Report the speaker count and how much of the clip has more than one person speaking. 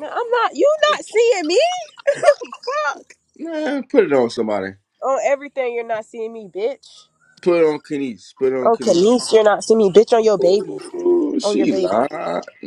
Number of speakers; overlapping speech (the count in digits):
2, about 12%